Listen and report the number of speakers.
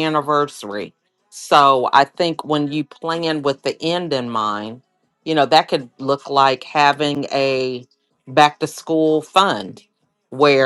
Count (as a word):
one